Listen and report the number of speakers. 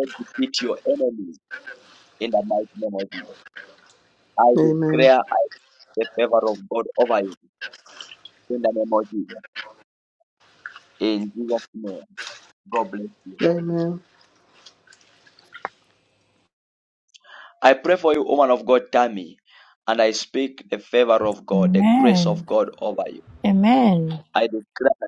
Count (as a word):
three